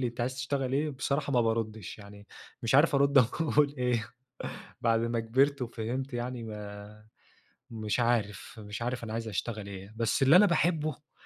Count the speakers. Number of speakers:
one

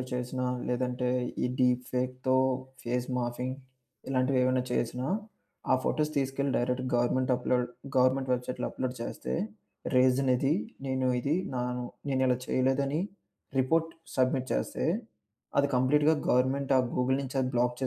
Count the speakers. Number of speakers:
one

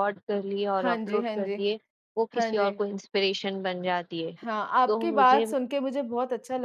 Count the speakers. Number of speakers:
two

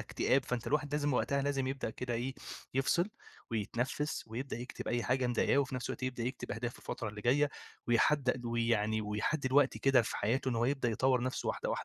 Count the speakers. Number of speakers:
one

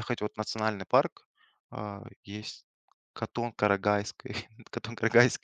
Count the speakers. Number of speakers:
one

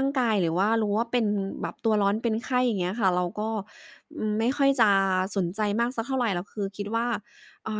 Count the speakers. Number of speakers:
one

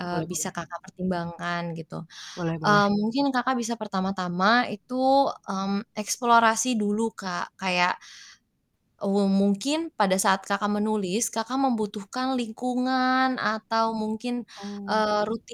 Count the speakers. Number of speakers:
two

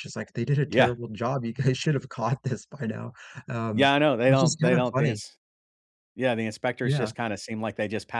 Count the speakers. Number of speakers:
two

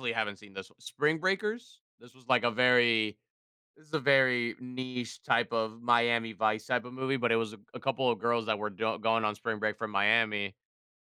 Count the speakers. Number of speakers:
one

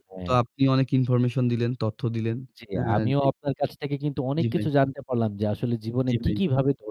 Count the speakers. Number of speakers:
two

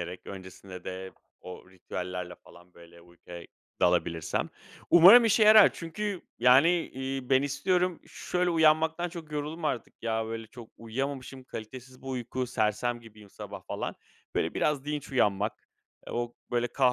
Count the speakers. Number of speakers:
one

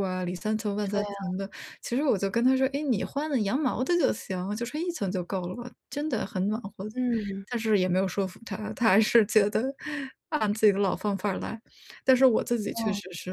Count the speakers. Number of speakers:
two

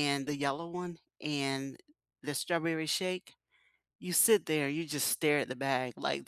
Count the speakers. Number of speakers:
one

